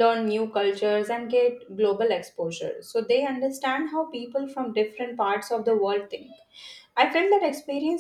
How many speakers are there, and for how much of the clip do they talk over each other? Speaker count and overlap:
1, no overlap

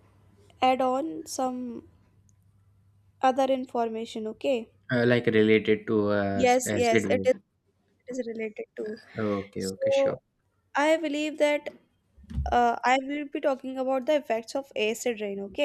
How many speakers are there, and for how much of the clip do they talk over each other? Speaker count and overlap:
2, about 9%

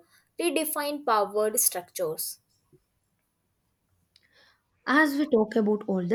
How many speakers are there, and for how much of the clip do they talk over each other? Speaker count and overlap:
2, no overlap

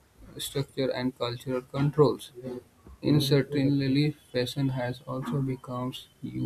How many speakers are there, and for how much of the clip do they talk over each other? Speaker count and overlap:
1, no overlap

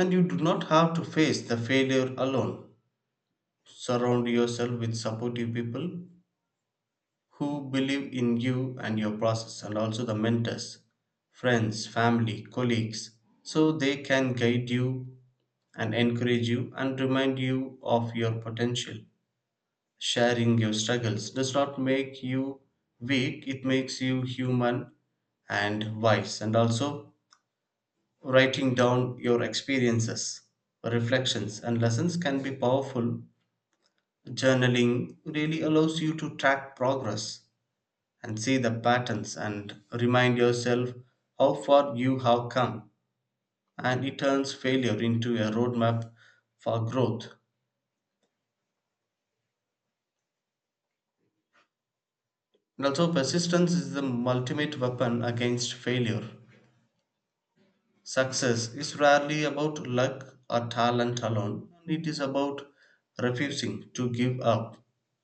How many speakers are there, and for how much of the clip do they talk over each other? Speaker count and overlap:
1, no overlap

